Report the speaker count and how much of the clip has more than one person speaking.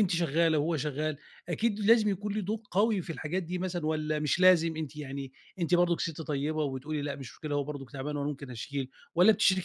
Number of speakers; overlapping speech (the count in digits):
1, no overlap